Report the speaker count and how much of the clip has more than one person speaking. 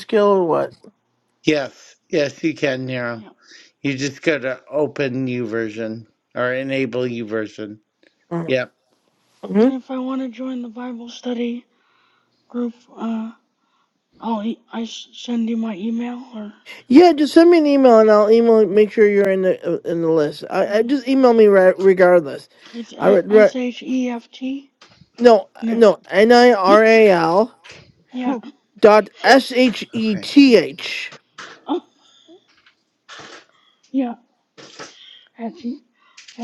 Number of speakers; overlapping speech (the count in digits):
3, about 3%